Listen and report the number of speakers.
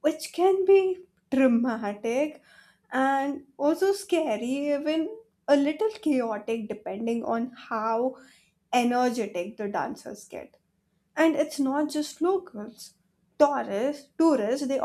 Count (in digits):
1